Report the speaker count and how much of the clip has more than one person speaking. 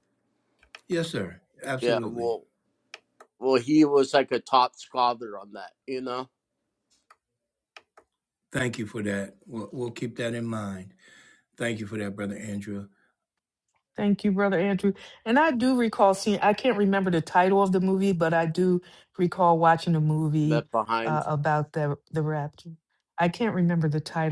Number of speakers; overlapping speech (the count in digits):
3, about 3%